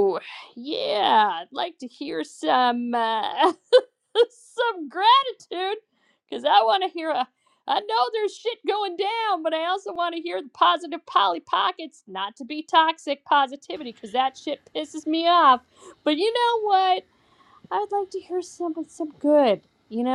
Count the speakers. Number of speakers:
1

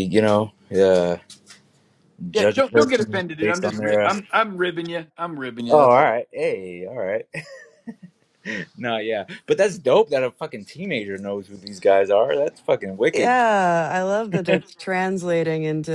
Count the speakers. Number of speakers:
3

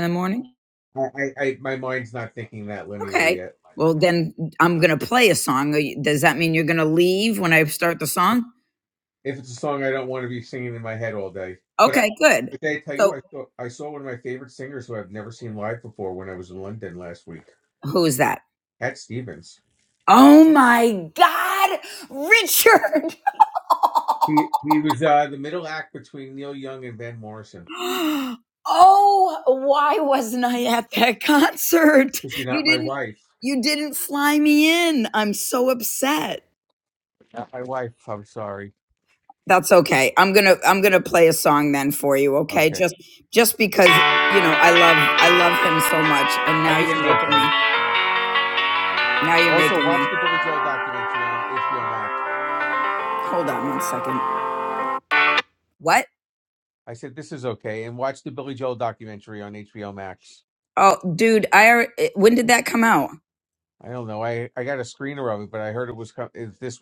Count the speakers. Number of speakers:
2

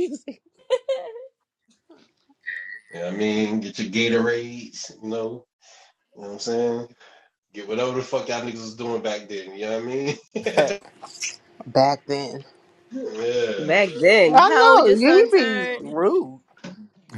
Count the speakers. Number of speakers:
3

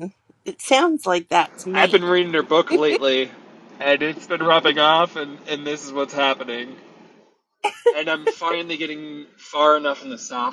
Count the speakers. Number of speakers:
2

